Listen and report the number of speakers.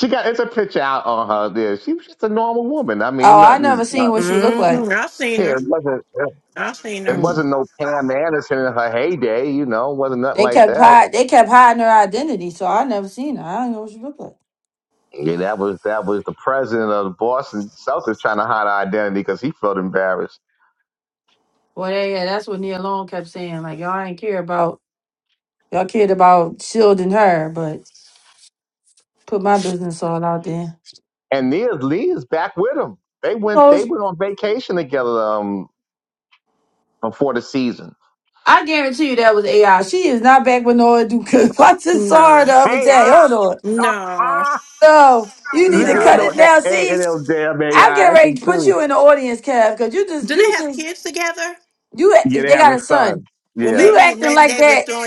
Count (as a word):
three